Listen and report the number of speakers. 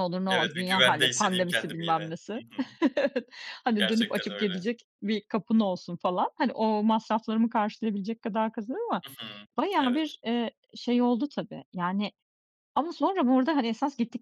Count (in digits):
2